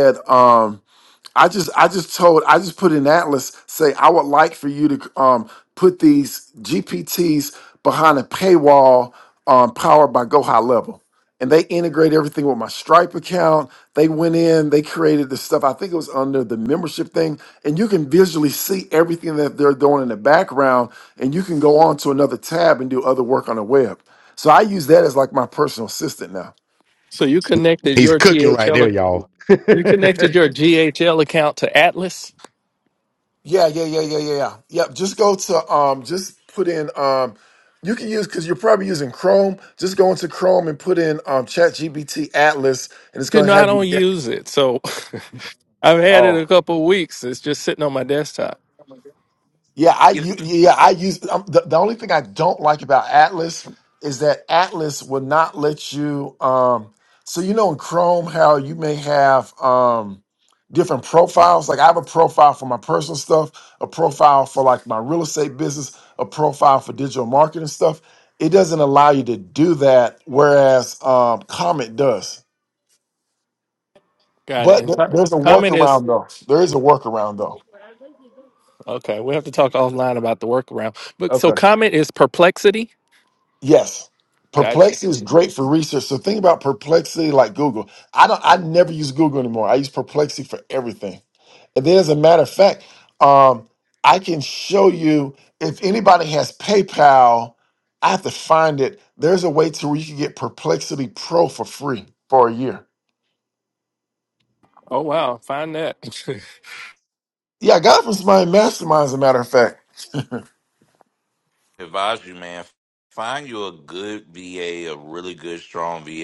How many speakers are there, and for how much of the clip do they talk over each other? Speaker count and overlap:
4, about 3%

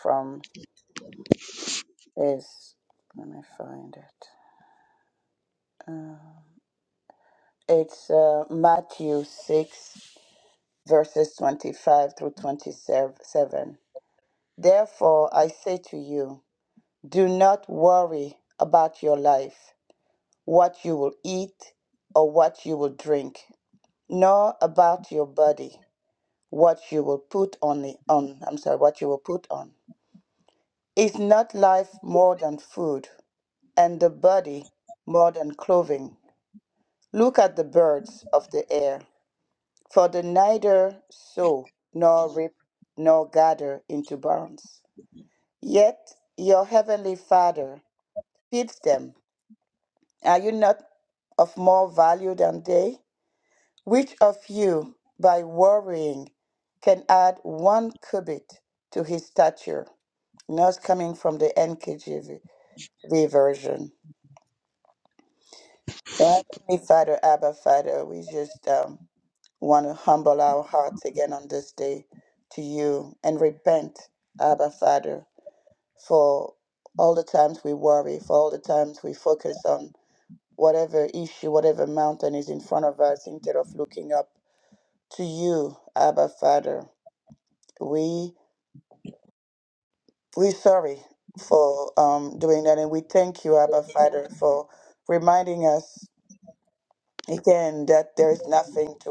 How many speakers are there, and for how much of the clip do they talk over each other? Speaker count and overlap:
1, no overlap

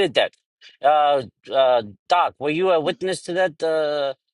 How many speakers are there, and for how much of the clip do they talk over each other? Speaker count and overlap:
1, no overlap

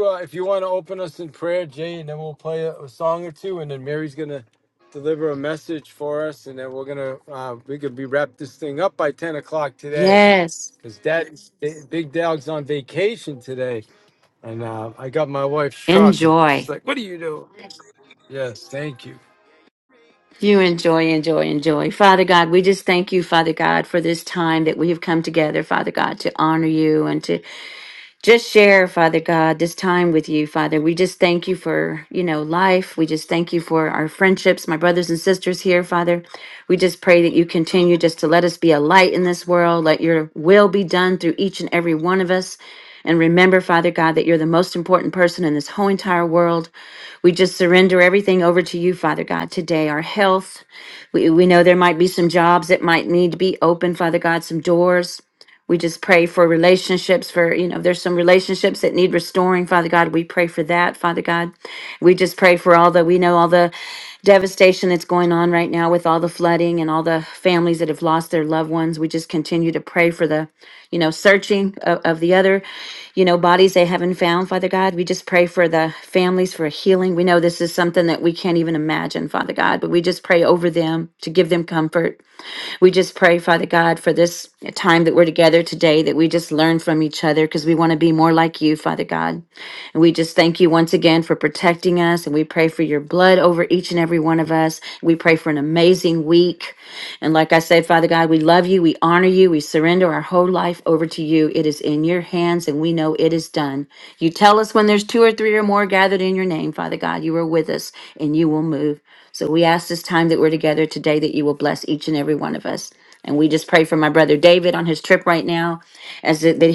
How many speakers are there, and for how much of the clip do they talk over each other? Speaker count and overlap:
2, about 1%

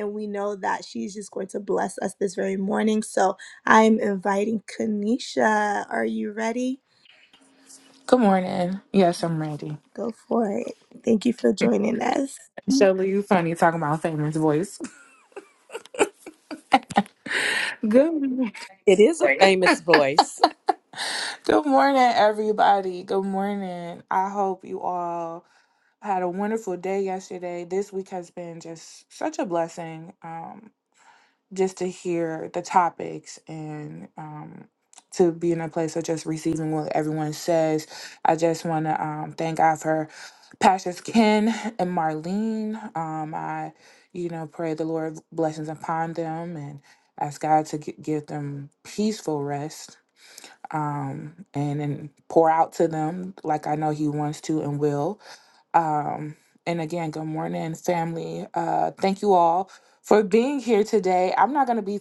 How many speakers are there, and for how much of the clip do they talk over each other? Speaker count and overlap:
3, no overlap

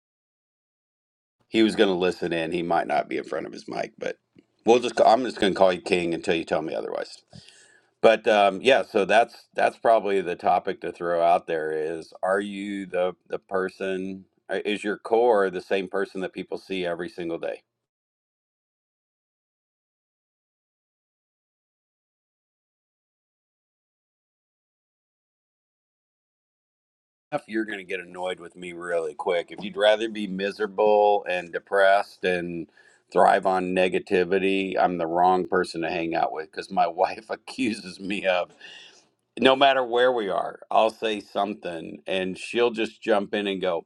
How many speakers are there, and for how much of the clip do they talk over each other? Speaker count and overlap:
1, no overlap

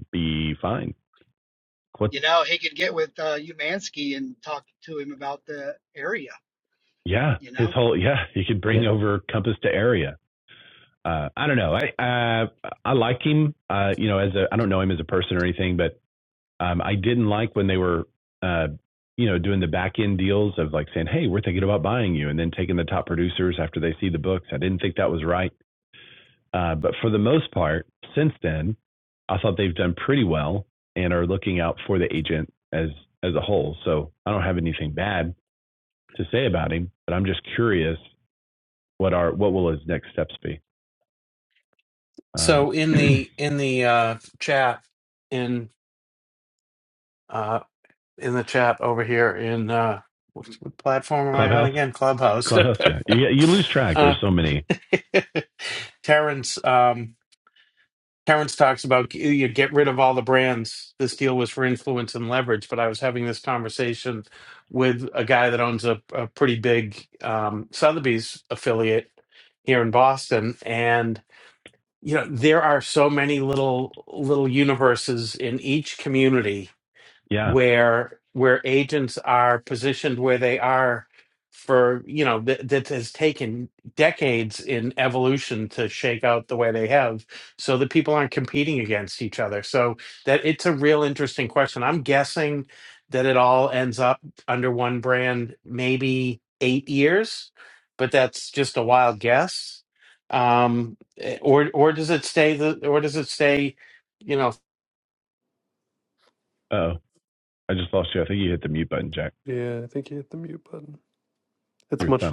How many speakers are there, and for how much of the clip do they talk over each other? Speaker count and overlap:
4, about 2%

